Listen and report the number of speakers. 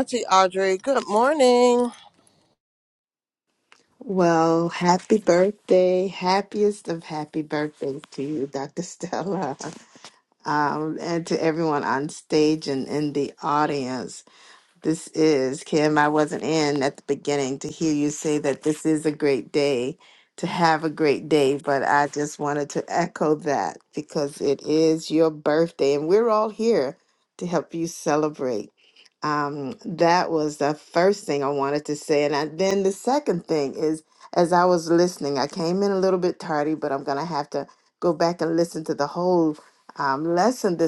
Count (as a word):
two